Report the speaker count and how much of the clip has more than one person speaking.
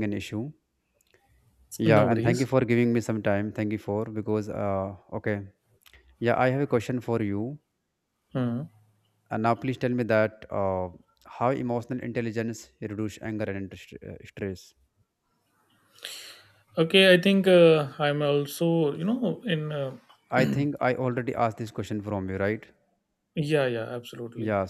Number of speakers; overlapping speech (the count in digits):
2, about 3%